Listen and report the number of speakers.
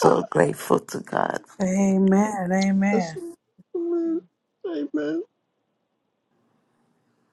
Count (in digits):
3